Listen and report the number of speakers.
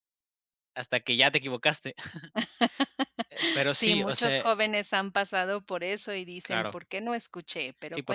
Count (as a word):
two